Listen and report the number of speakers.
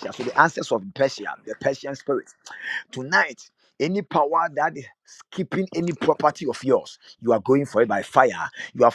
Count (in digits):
1